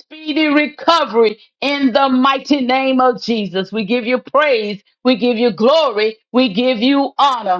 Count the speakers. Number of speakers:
one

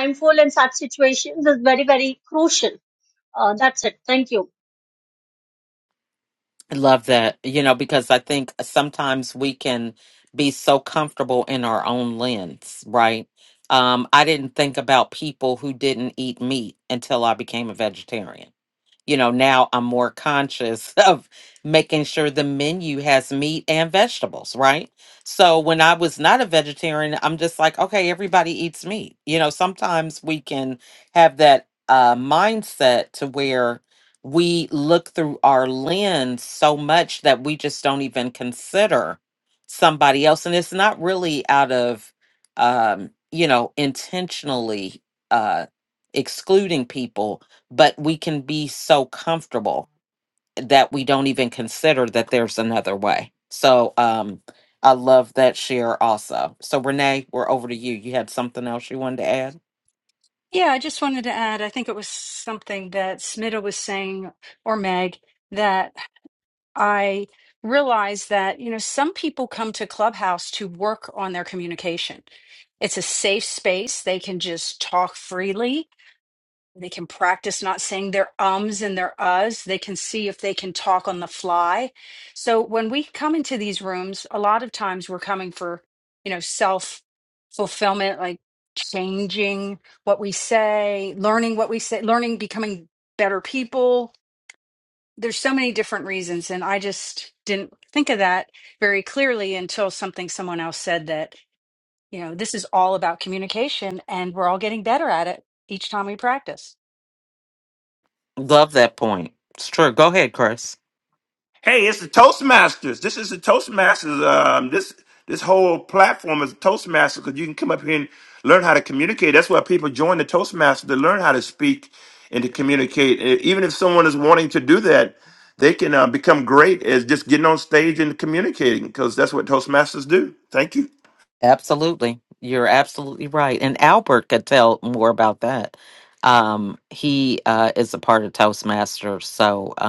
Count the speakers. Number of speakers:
four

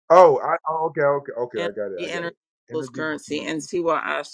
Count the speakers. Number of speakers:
two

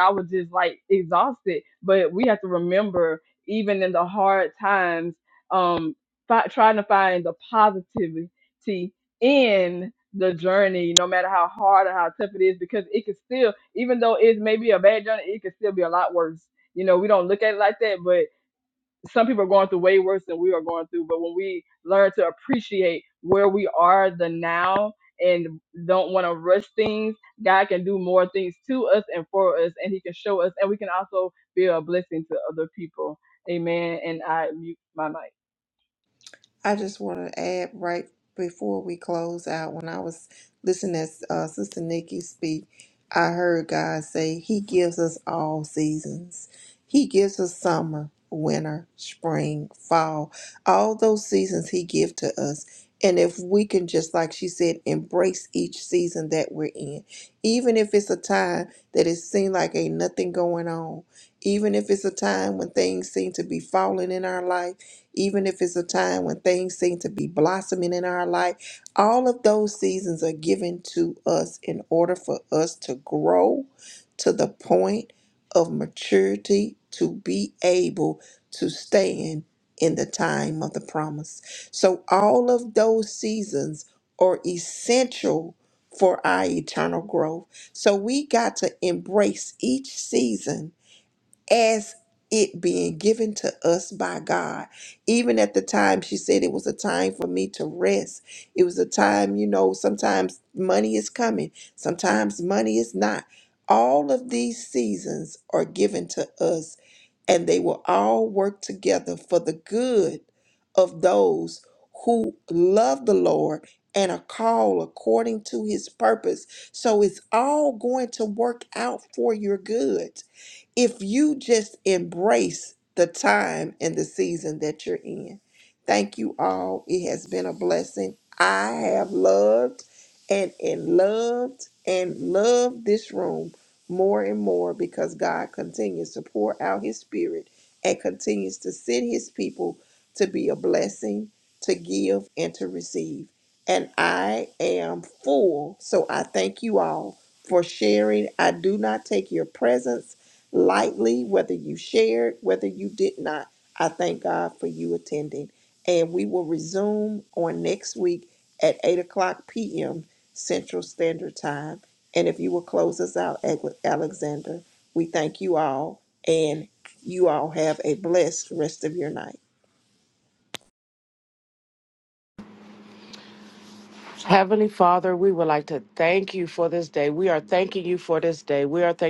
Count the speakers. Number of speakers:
three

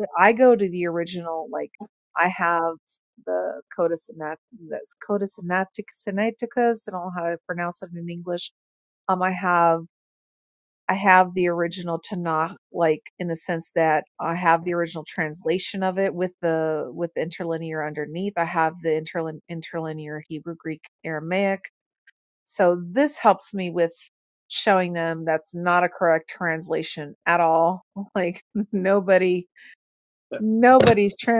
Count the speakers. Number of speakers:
one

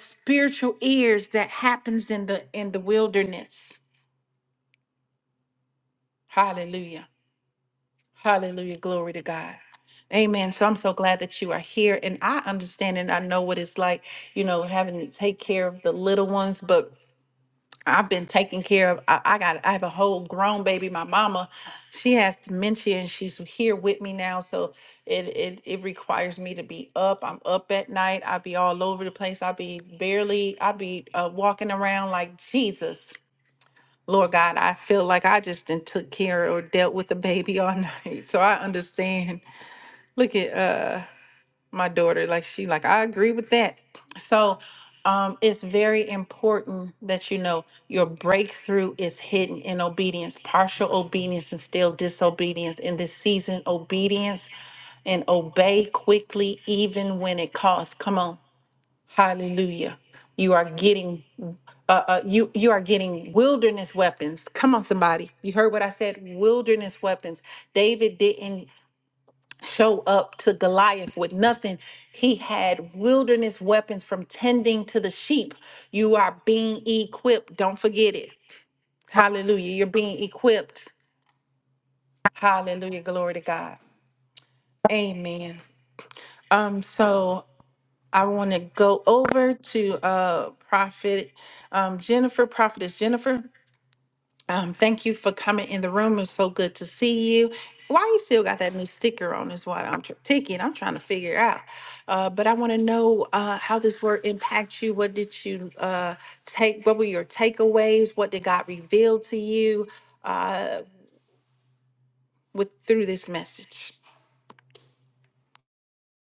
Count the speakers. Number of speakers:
one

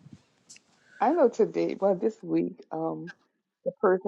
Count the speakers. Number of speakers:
one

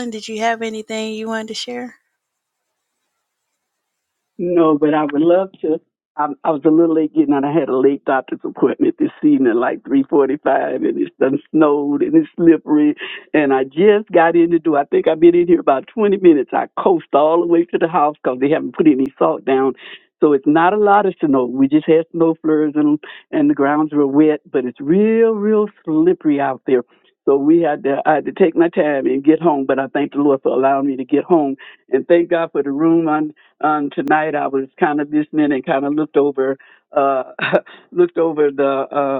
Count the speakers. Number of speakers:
two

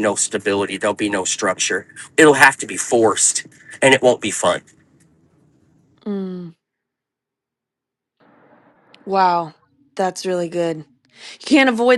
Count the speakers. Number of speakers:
two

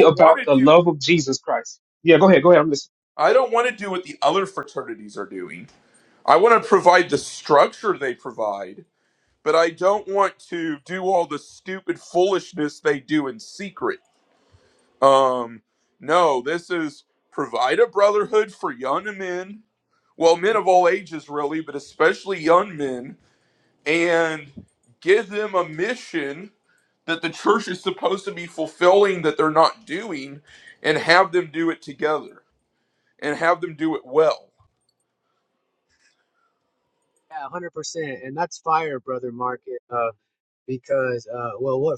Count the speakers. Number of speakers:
three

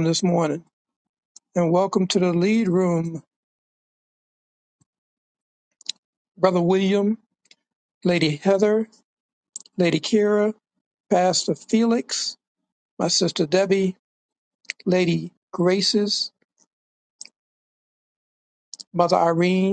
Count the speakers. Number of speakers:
one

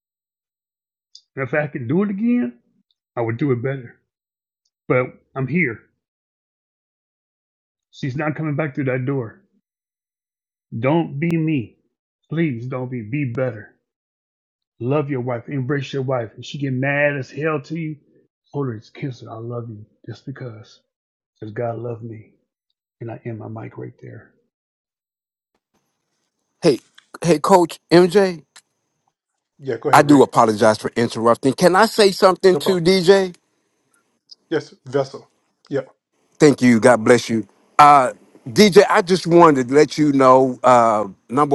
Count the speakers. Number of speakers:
three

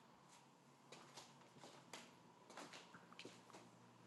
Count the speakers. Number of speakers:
zero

